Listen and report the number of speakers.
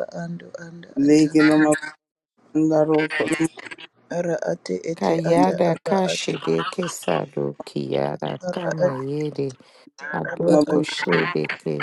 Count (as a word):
three